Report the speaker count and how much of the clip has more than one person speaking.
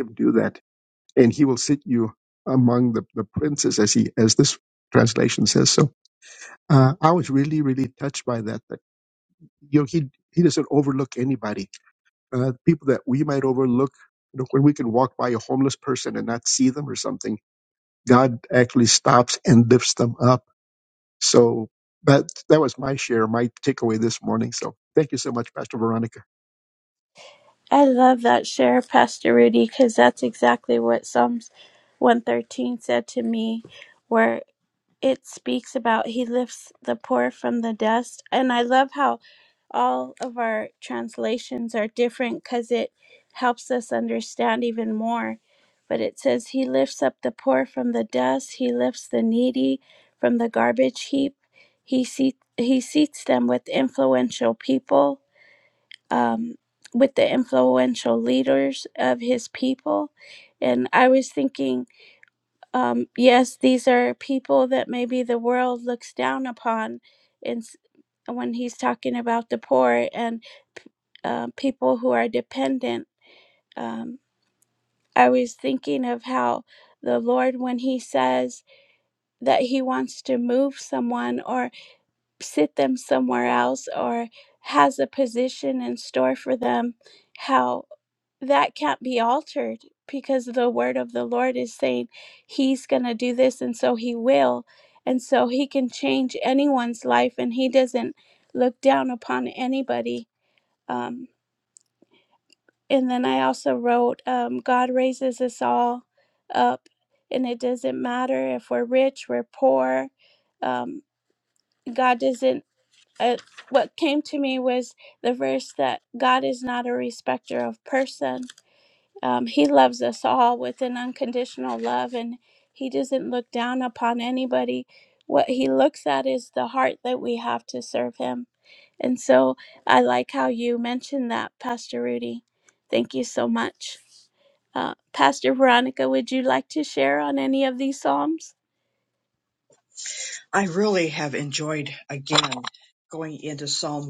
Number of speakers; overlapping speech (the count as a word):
three, no overlap